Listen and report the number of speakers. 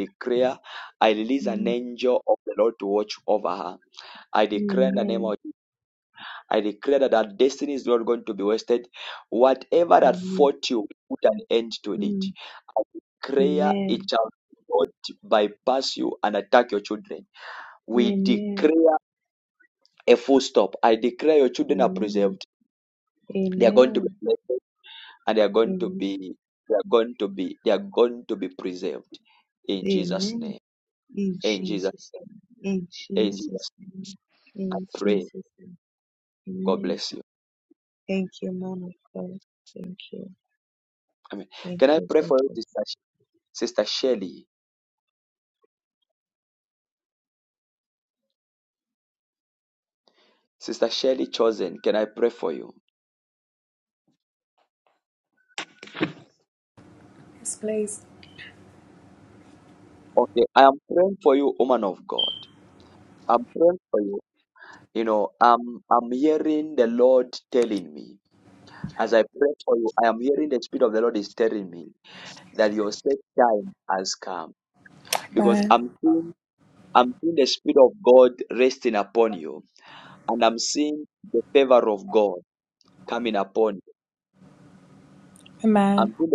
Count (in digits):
3